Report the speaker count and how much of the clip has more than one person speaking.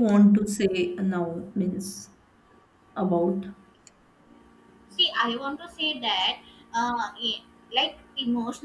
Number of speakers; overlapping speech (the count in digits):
2, no overlap